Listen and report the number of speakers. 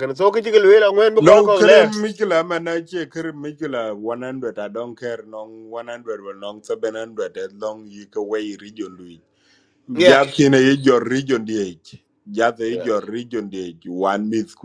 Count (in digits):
2